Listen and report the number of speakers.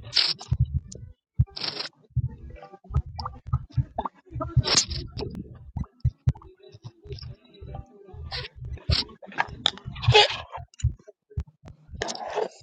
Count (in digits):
0